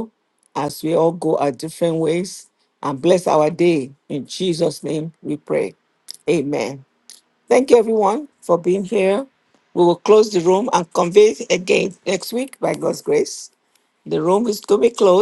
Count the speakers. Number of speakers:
one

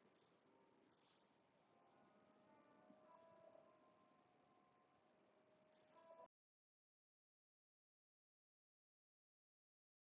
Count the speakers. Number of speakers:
zero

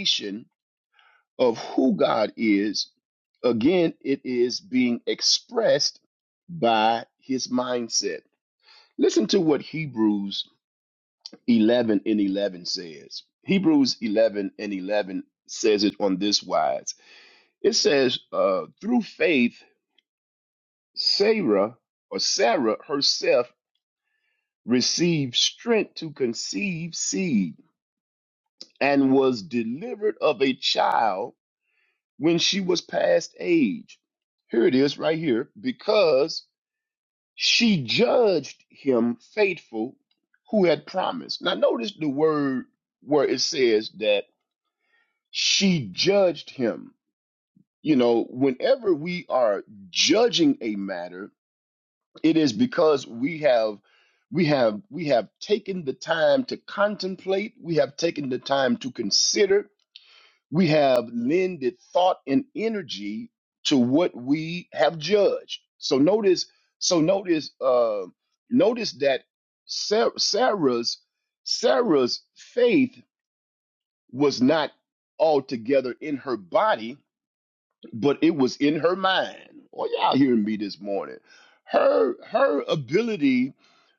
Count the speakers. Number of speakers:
one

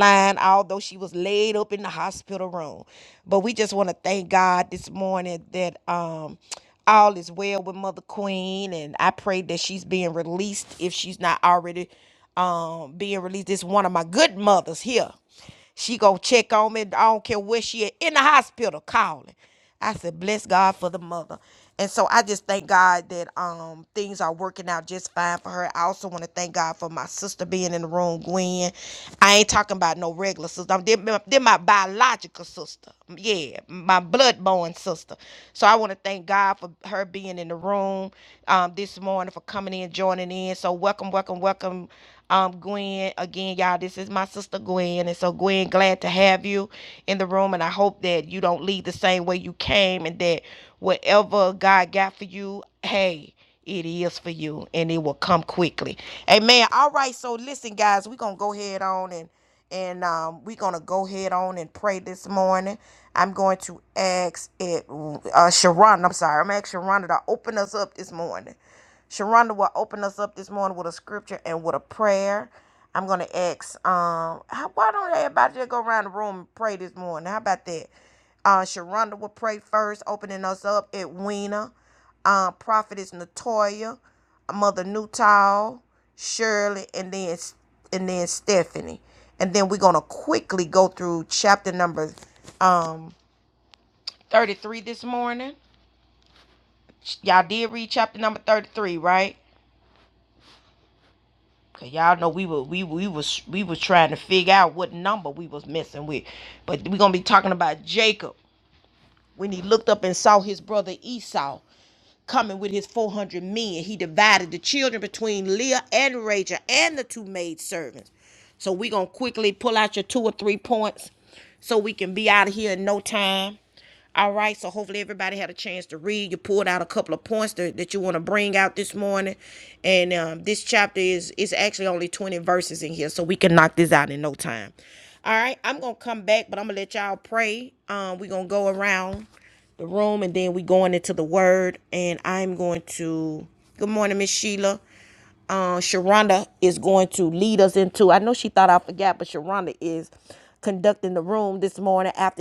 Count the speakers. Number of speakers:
one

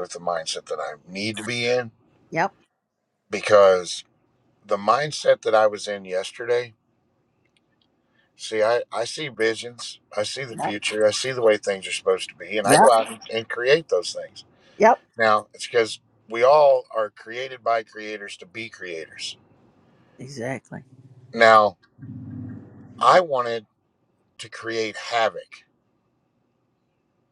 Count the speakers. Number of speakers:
two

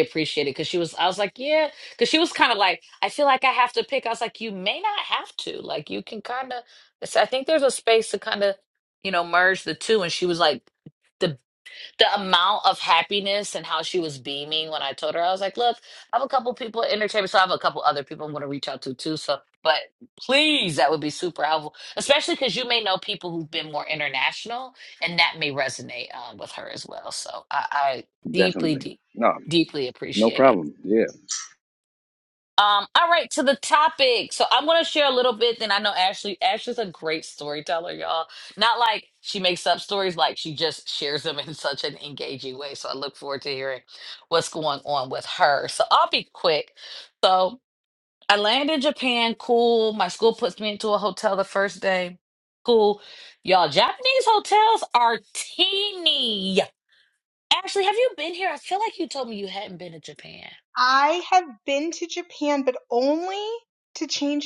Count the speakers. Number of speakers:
three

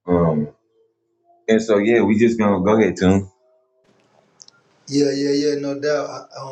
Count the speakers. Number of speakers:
two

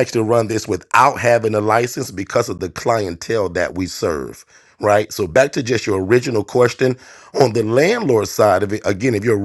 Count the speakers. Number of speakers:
one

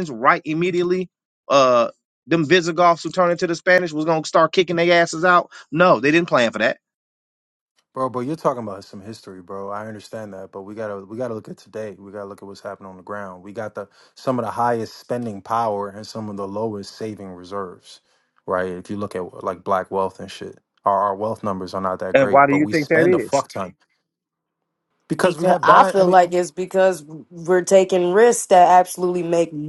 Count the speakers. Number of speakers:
three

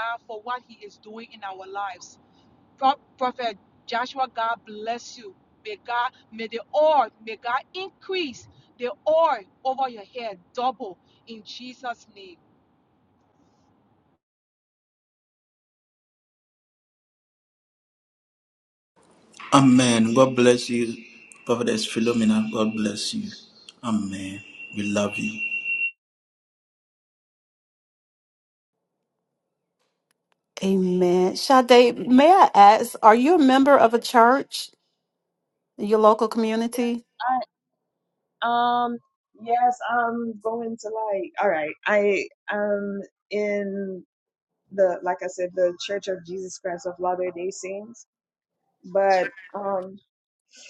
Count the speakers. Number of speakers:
four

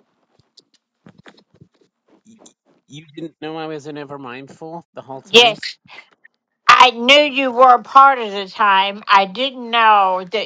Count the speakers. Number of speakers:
two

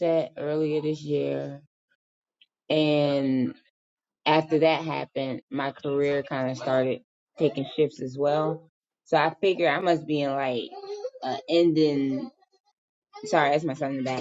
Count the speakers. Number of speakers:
one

